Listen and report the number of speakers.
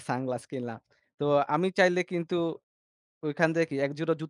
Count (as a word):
one